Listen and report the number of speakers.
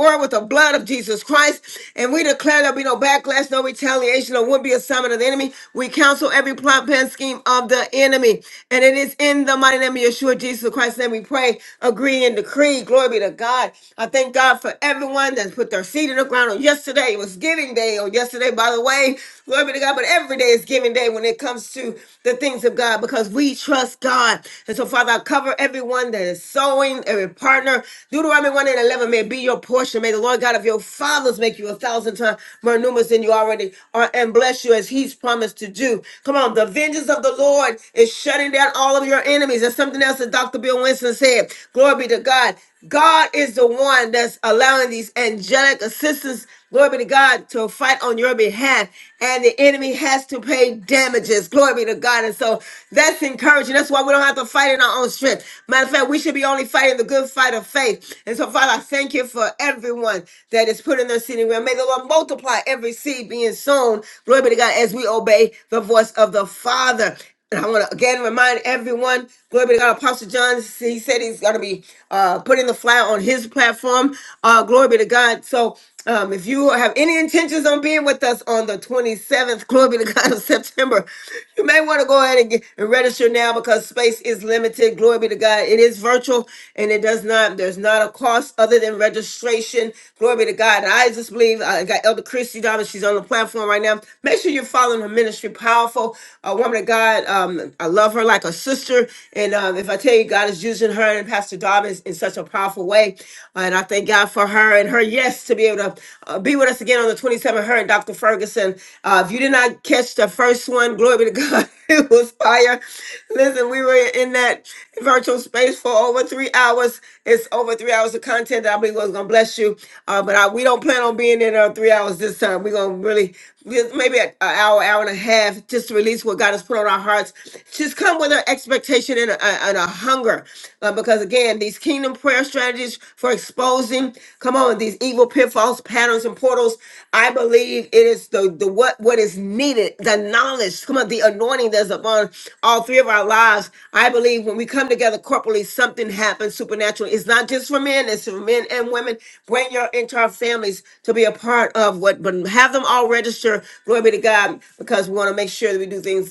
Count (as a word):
one